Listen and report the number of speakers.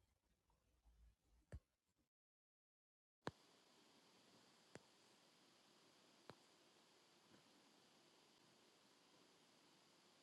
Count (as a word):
zero